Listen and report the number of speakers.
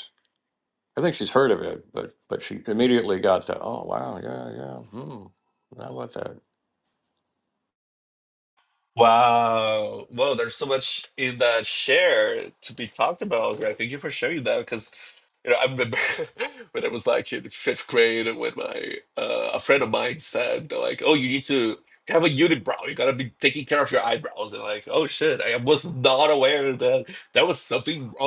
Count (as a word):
two